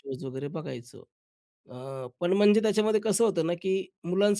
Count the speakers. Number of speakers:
one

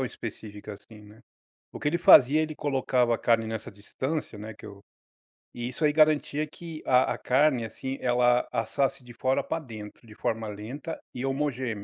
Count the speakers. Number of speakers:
one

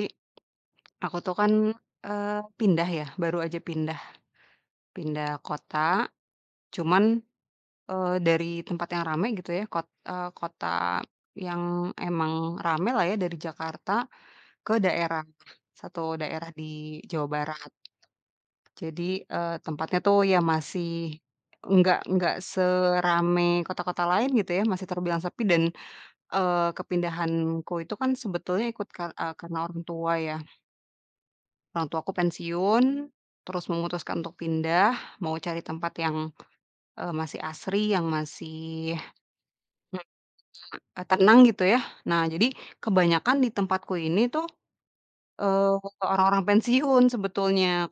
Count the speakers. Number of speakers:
one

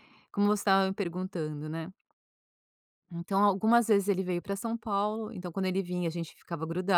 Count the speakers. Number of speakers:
one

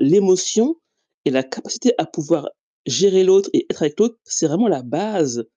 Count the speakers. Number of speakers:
one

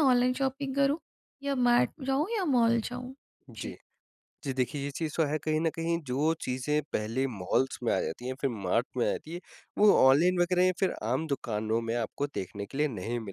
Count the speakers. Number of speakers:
two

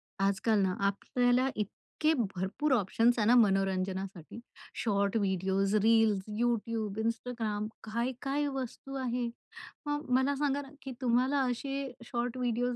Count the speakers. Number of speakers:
one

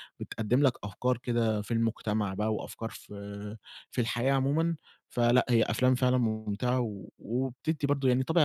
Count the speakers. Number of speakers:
one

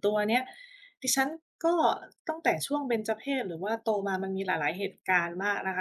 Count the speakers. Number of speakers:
one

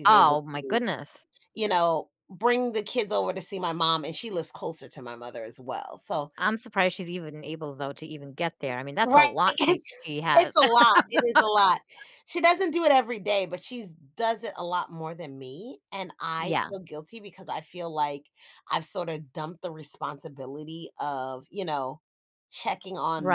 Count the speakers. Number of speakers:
two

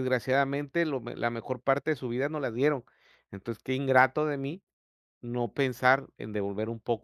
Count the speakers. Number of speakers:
one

